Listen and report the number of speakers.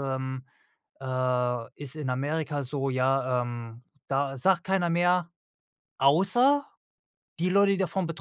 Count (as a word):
one